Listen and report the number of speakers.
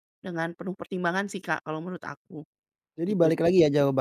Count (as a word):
two